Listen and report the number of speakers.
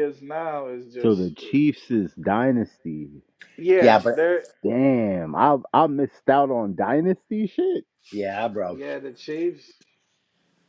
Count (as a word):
three